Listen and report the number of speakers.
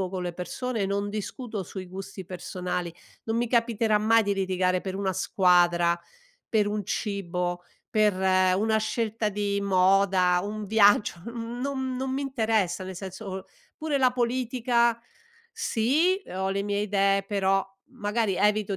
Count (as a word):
one